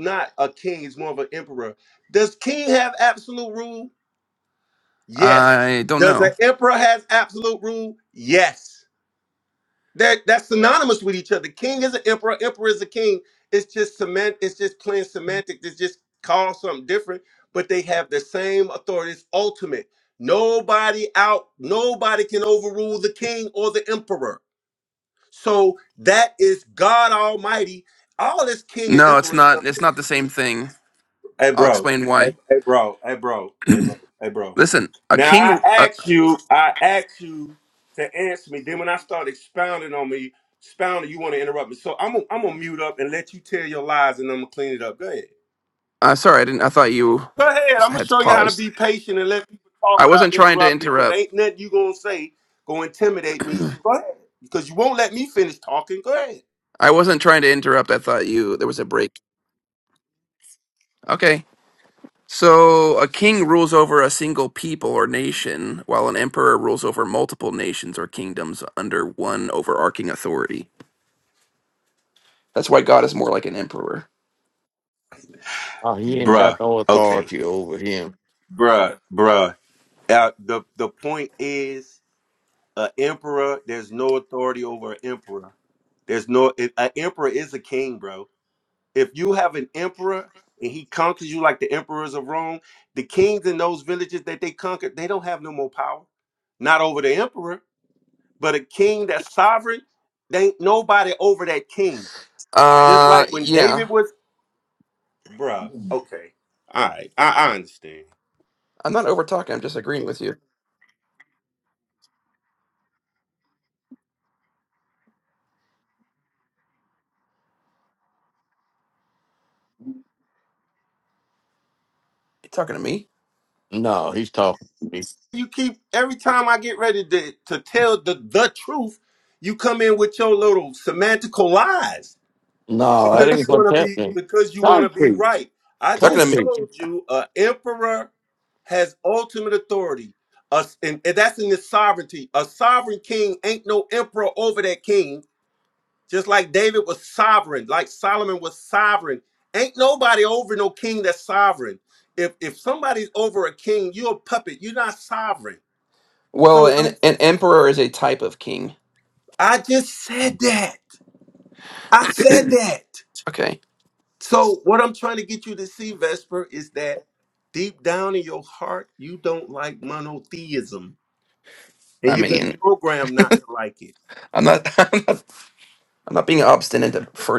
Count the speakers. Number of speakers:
3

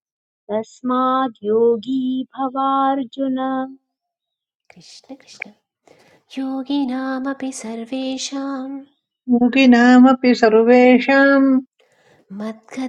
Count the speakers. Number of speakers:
3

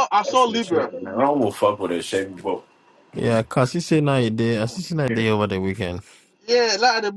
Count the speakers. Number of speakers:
3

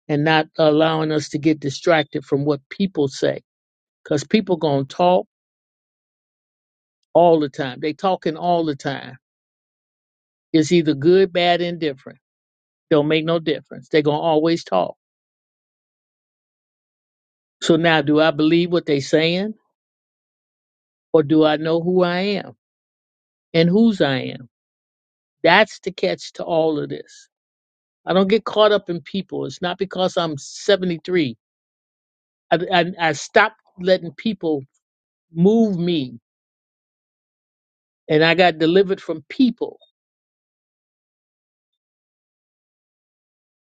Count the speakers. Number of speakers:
1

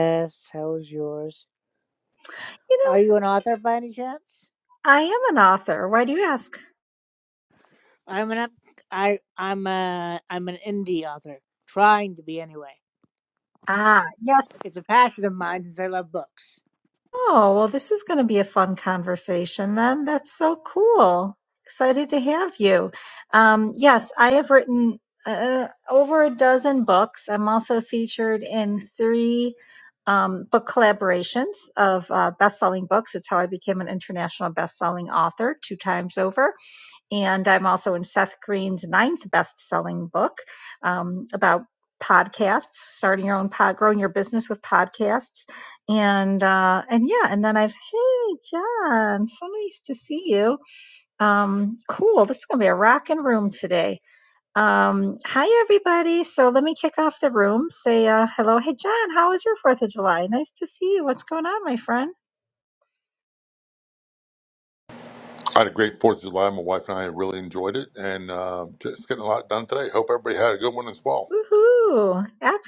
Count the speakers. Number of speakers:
3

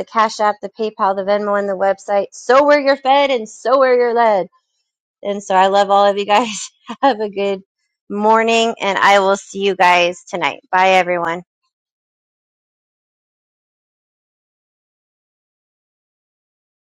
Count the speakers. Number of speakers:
1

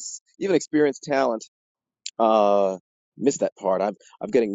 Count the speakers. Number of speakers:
1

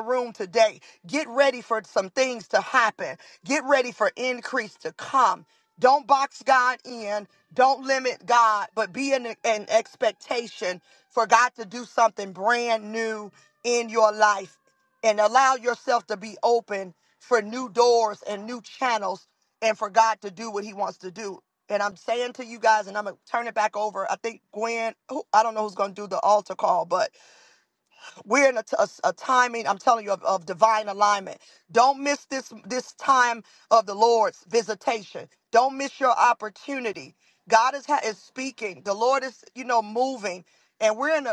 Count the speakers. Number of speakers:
1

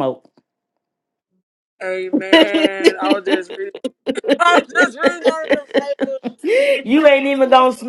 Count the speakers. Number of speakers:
2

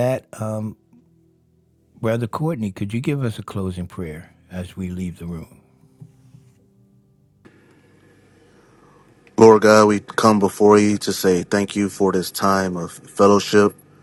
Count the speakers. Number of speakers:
2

